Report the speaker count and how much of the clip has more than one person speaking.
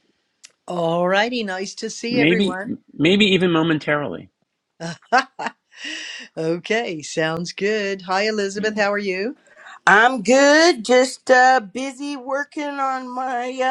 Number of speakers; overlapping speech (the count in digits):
3, about 5%